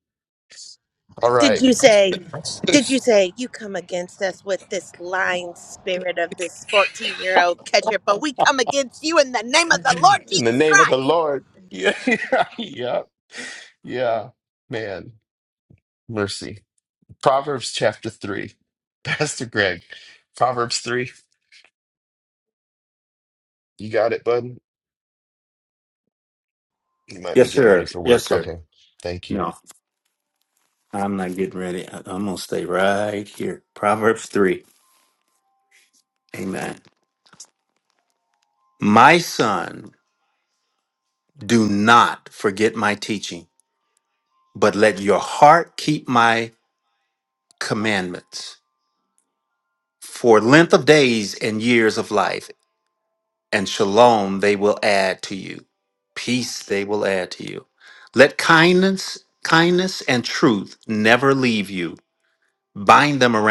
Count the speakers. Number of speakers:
three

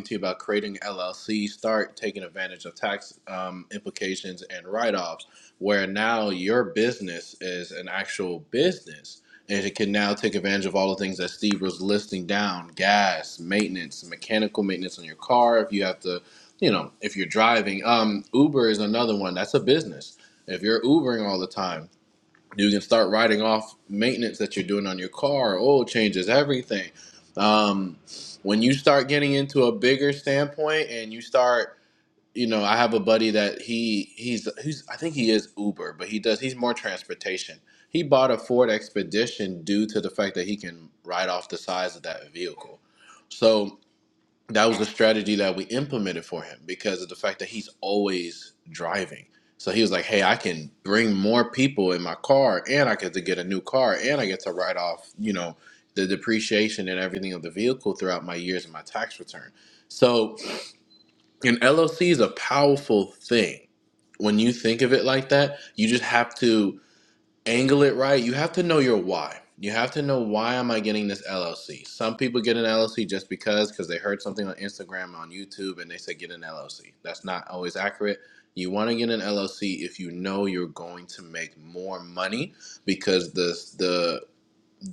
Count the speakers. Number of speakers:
one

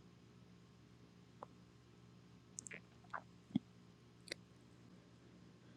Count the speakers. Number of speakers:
zero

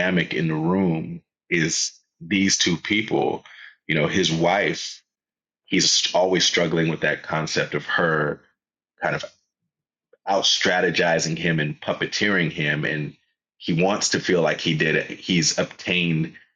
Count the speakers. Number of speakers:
one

